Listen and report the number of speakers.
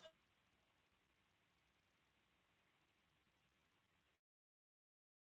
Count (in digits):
0